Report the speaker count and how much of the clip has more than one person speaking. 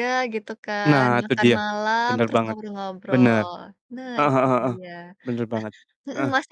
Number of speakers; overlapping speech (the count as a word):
two, about 36%